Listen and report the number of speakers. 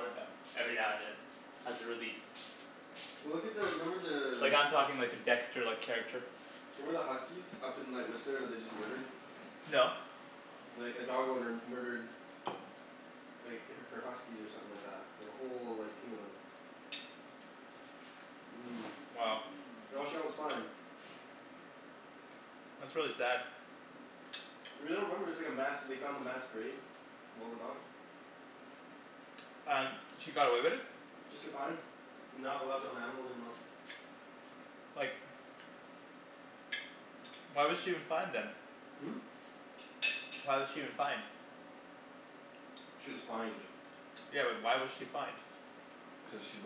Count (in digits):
2